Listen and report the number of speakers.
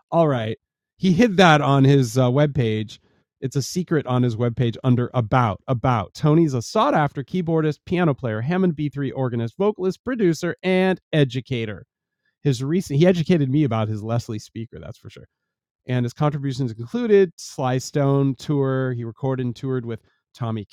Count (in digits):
1